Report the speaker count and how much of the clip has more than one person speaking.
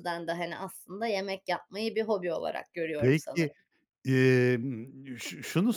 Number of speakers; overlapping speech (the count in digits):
2, about 9%